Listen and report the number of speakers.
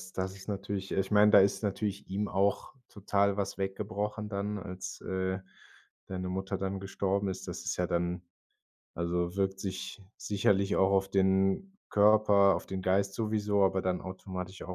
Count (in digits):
1